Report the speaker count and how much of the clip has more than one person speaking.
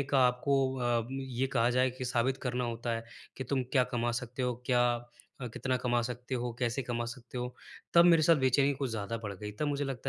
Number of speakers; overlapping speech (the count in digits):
1, no overlap